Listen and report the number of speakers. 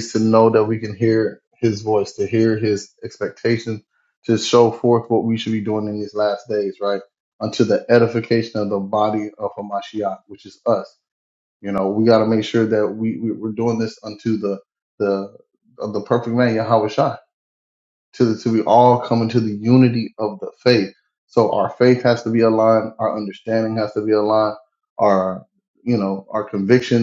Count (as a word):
one